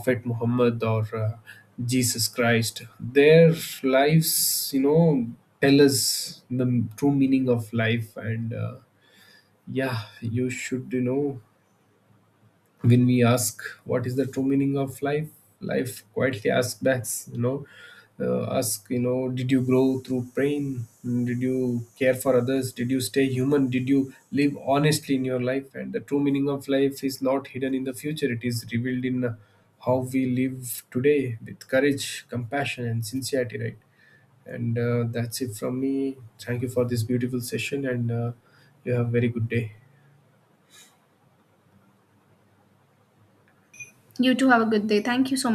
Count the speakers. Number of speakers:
two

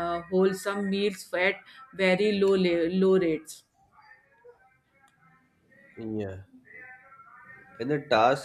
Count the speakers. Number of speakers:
two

